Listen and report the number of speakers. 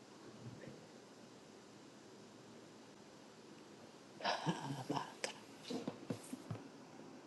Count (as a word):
zero